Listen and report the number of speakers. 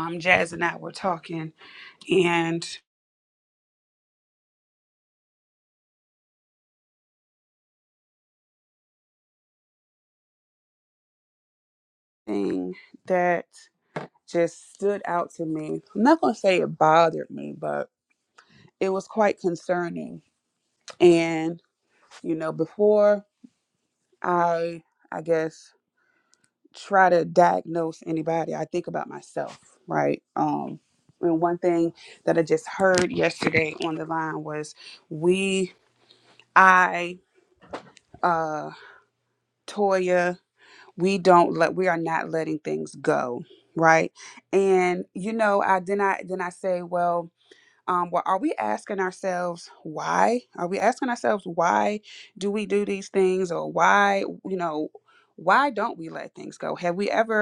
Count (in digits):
1